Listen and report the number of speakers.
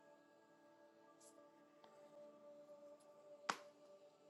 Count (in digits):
0